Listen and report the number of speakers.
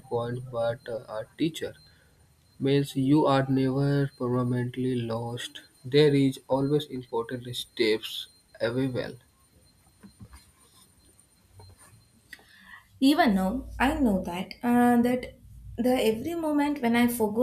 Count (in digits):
2